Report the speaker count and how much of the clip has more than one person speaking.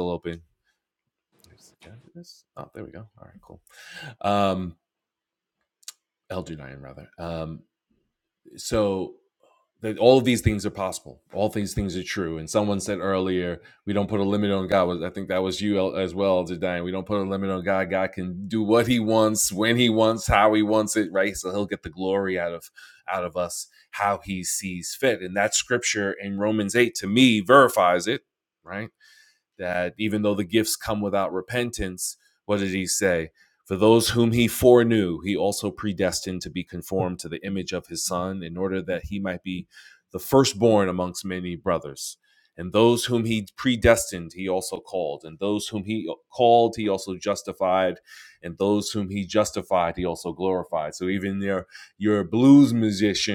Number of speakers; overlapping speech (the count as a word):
one, no overlap